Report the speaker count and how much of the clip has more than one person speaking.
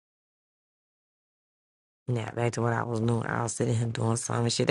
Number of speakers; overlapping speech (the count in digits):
1, no overlap